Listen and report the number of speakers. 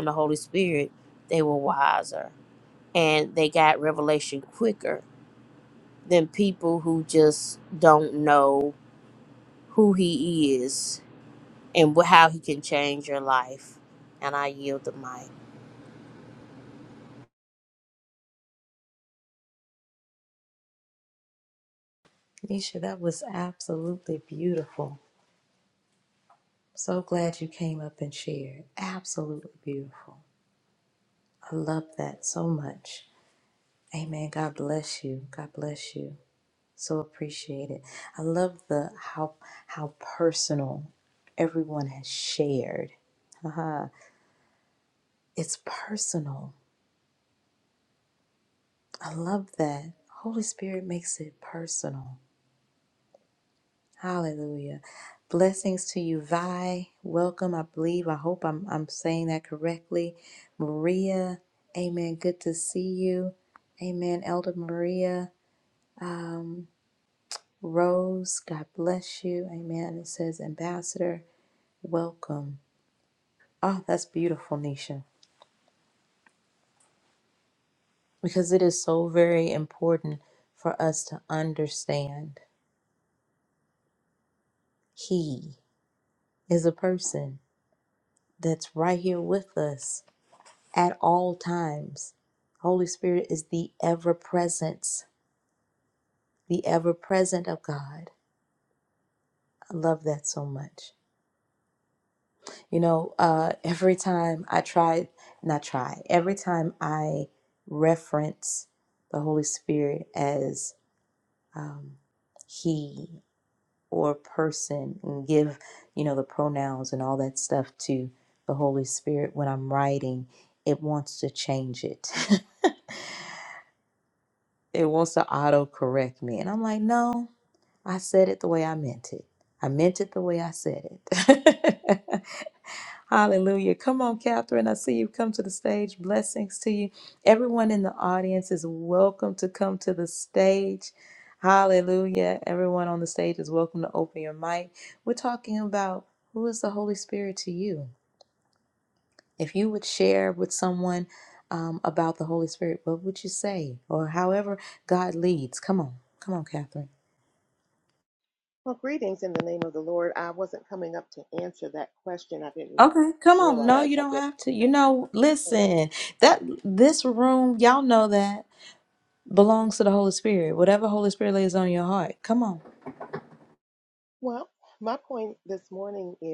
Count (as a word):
three